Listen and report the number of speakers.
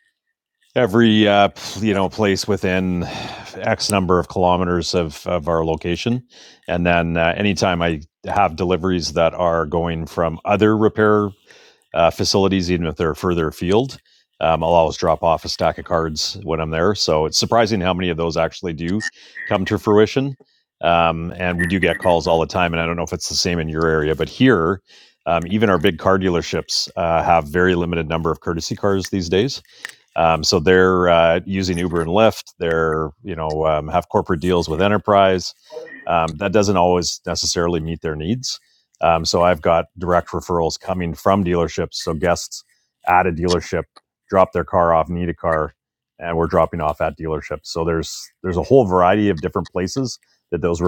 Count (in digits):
1